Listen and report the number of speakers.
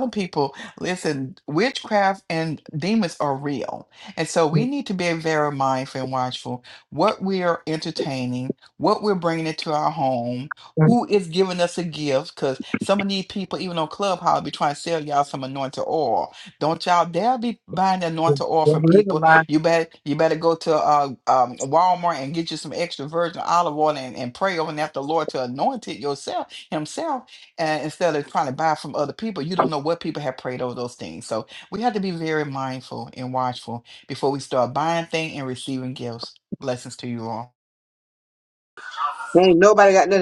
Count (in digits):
2